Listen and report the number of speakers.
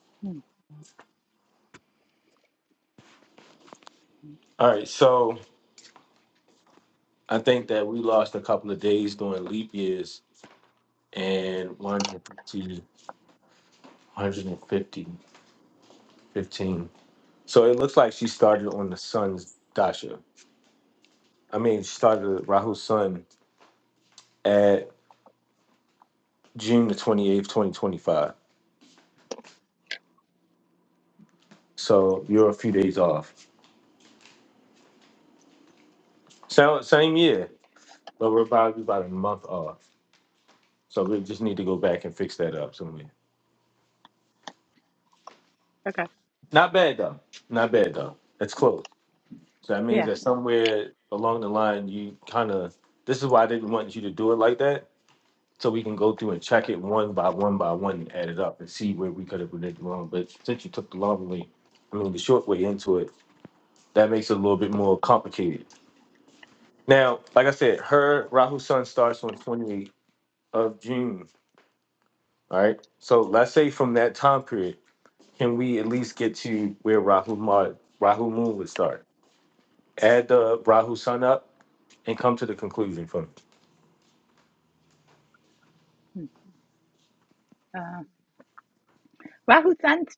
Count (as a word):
two